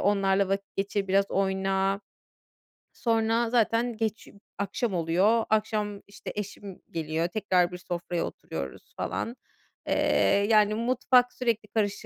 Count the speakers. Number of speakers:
one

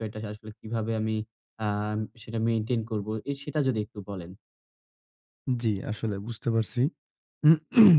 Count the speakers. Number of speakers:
two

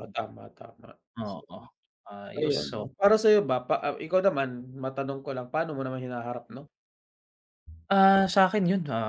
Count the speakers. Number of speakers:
two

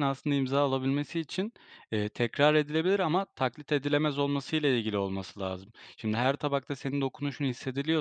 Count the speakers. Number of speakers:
one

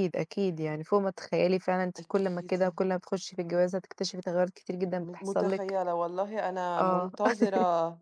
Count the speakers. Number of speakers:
two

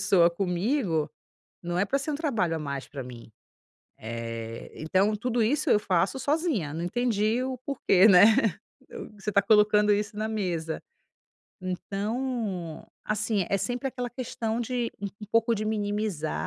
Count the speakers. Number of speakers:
one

